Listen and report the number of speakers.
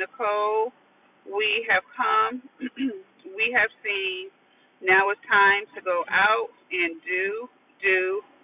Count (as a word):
one